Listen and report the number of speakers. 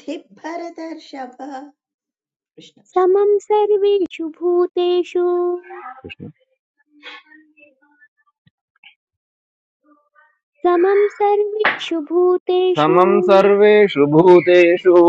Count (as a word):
three